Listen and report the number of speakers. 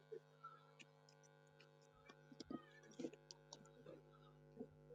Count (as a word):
zero